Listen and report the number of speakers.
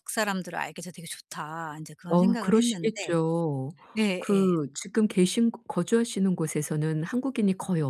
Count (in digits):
2